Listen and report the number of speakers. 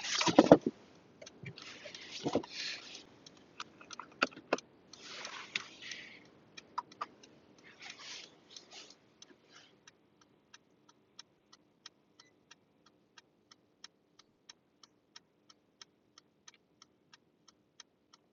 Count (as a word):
zero